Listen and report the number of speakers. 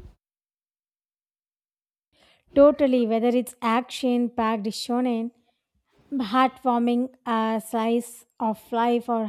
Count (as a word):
one